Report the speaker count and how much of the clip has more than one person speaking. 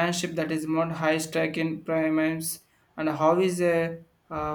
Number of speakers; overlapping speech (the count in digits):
1, no overlap